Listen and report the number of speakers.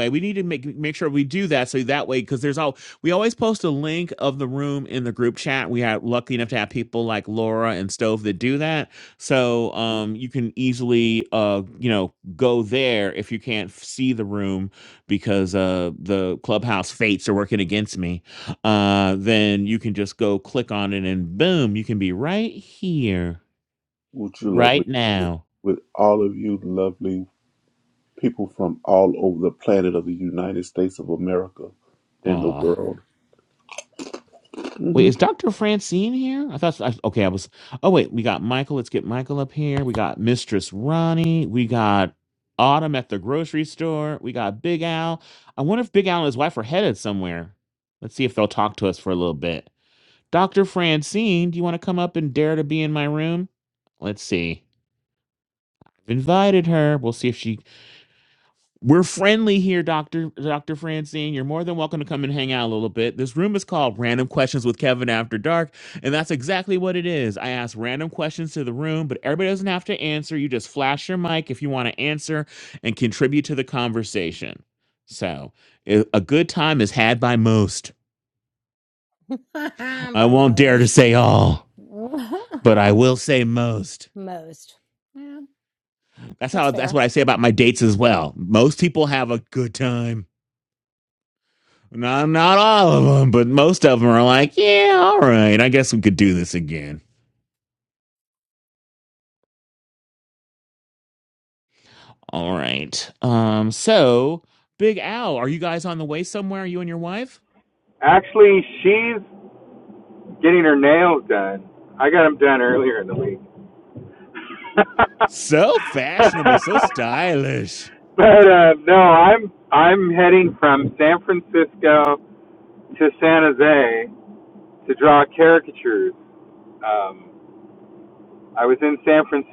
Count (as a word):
four